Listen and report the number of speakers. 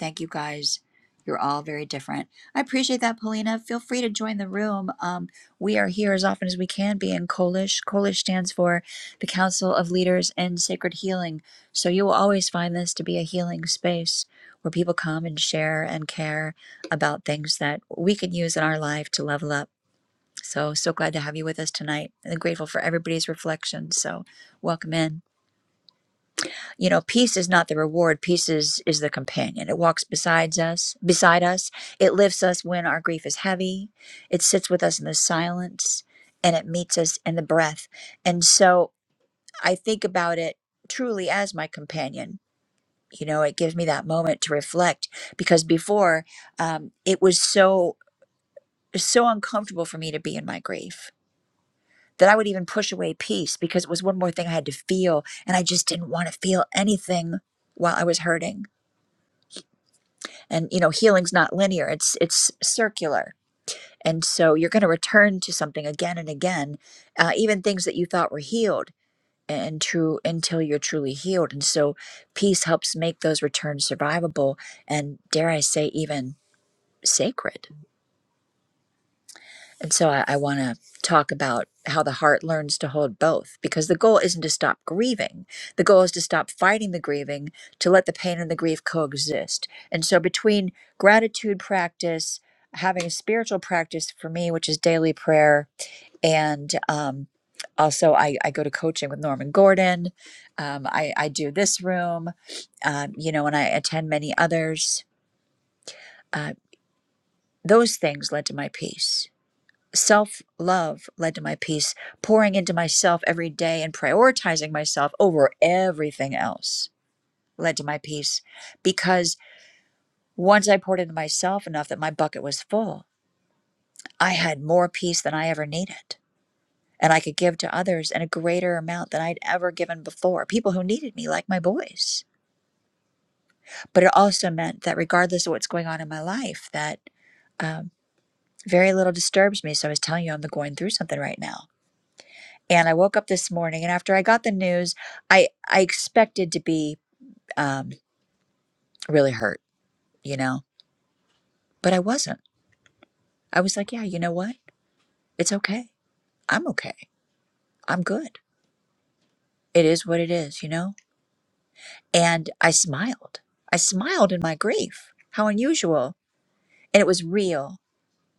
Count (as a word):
one